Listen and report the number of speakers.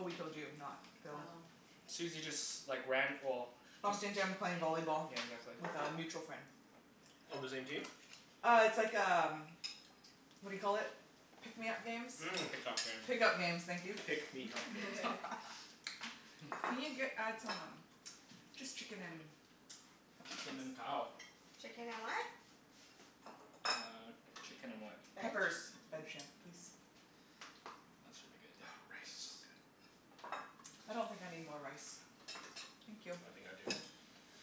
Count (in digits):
4